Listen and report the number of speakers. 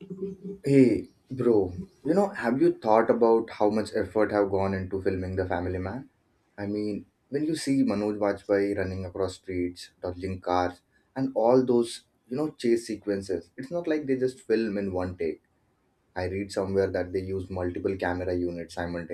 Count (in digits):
1